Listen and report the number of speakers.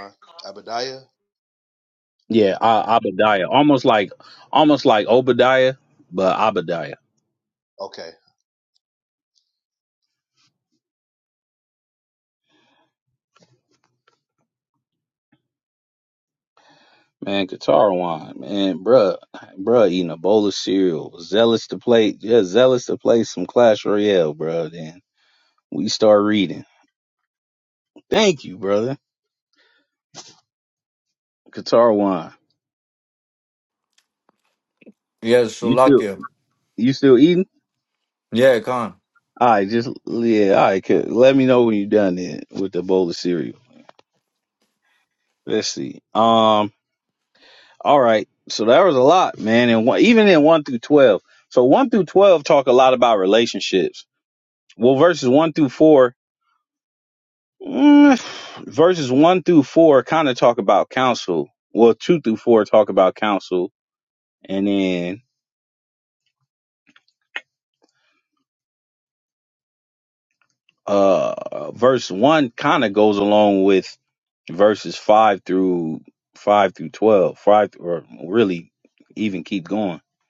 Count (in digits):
3